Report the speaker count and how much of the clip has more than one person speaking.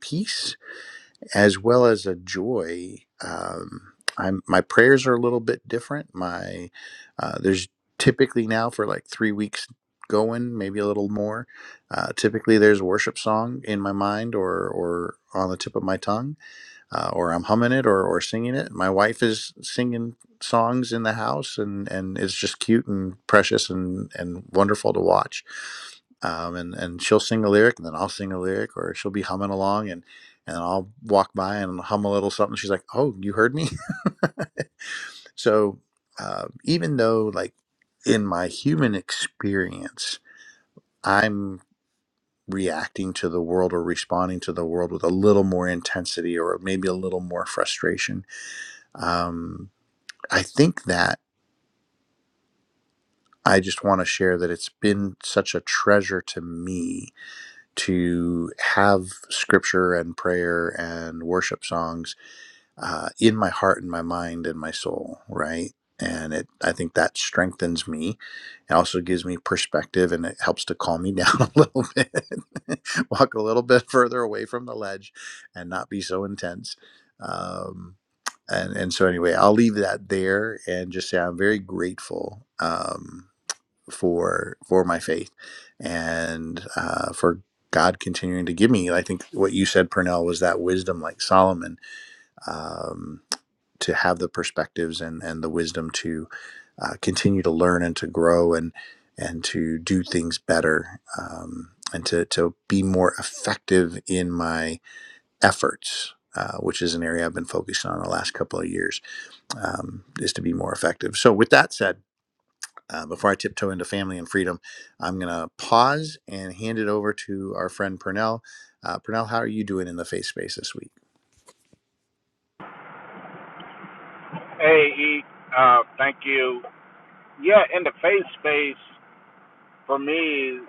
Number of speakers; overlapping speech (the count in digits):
2, no overlap